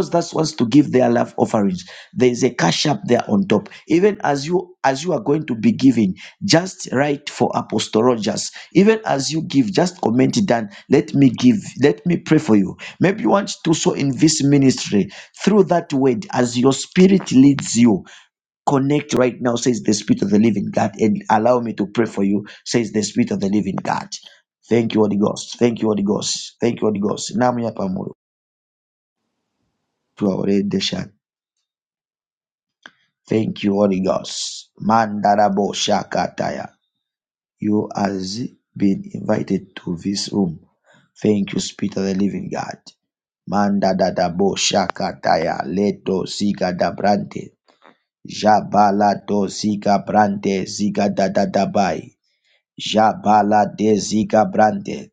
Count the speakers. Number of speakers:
1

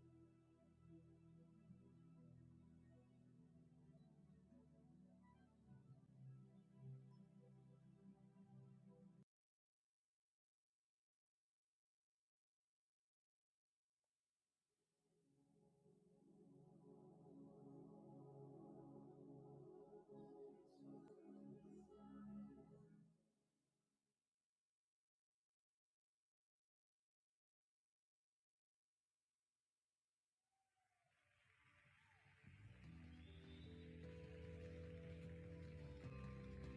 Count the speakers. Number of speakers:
0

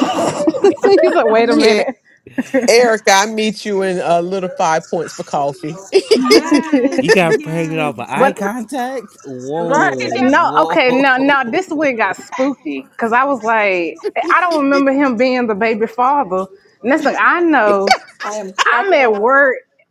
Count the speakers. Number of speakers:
5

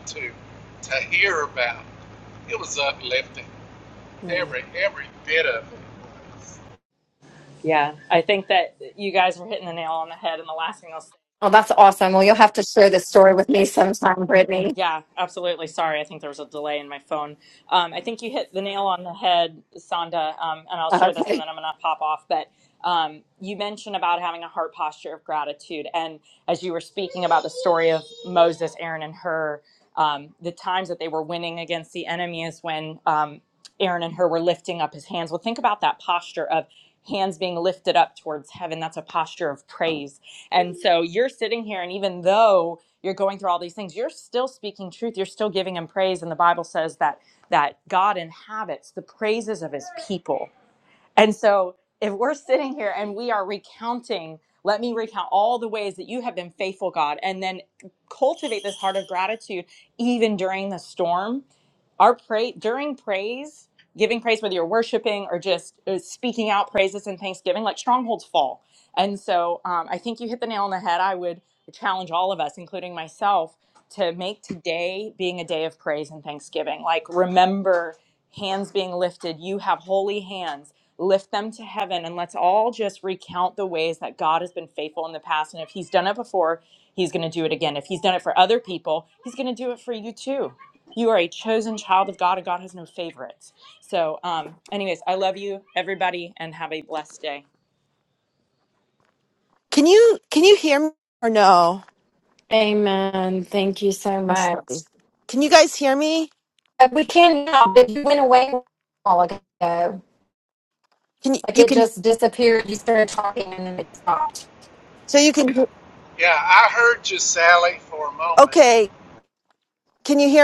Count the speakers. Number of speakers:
4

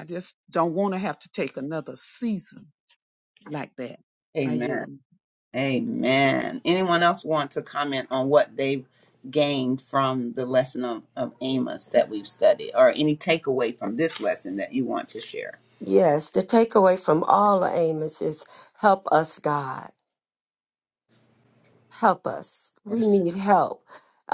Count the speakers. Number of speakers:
3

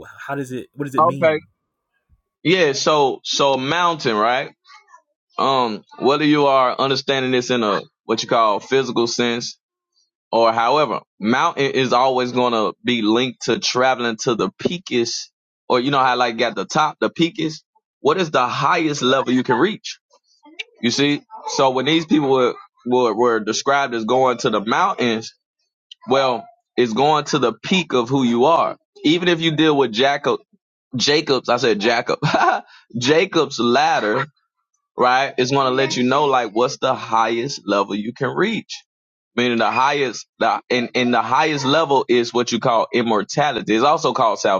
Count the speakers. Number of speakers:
2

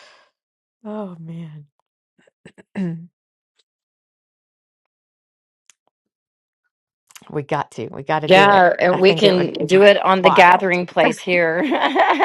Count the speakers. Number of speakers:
2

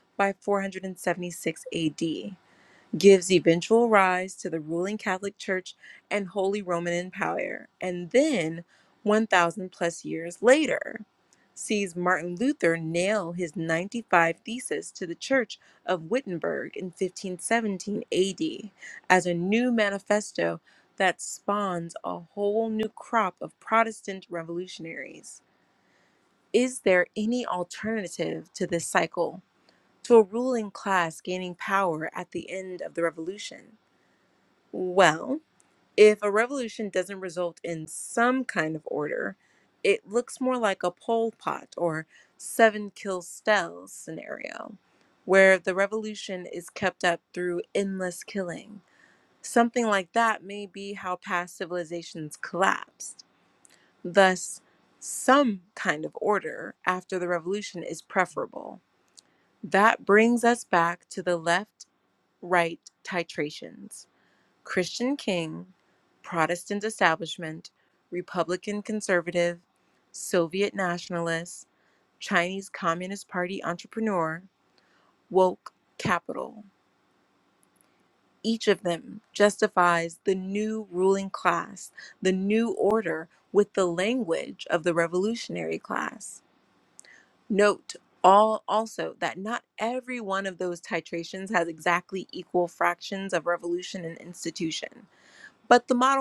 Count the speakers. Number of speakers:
1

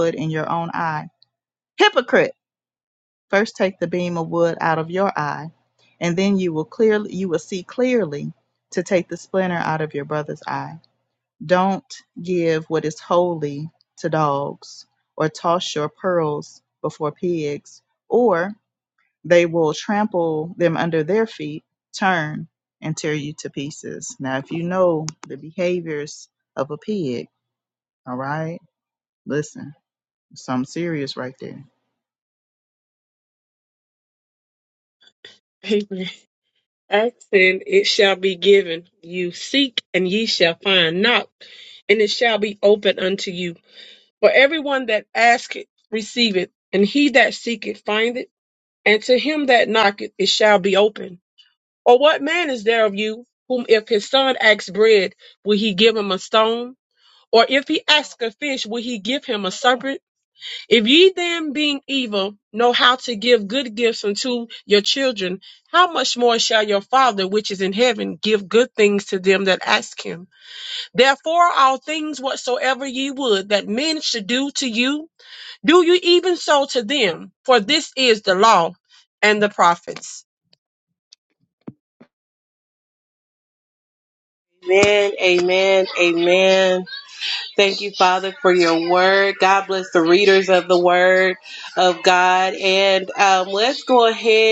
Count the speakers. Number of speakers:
3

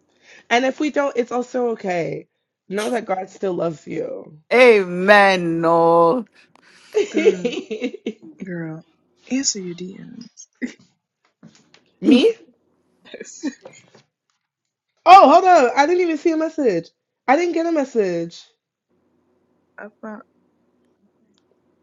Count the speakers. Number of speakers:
3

